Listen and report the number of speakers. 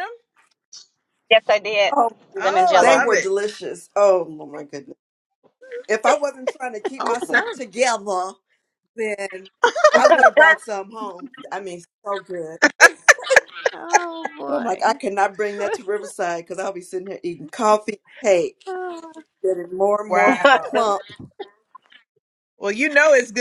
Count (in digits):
4